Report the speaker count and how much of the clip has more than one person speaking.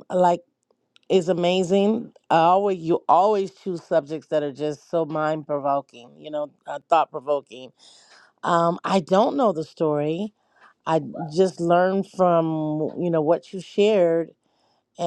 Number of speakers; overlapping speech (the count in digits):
1, no overlap